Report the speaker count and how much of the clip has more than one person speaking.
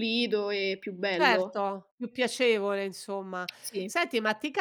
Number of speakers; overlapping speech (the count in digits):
2, about 8%